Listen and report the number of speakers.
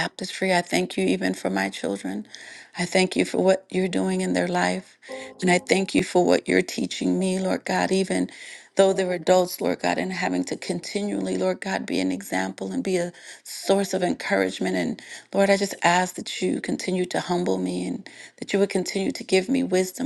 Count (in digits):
1